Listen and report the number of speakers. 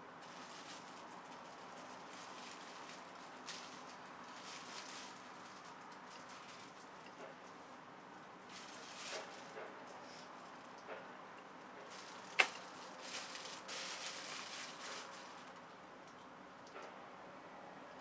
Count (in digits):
0